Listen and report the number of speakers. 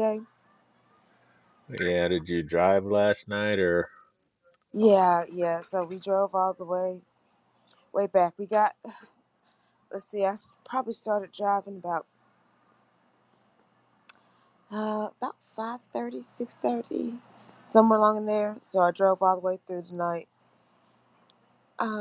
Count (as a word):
two